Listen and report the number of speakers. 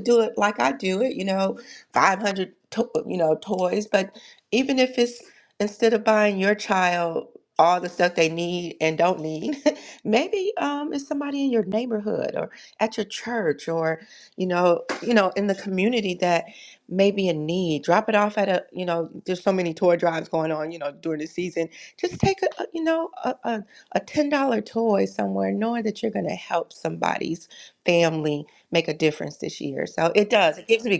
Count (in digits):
1